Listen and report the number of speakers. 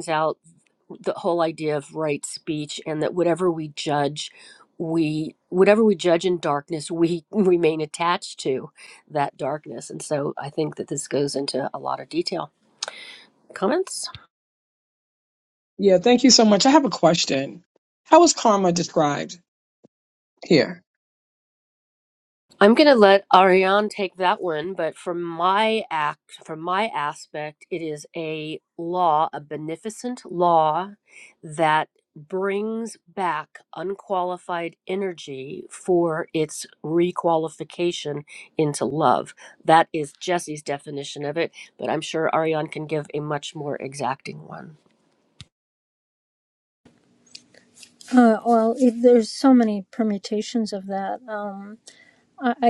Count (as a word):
three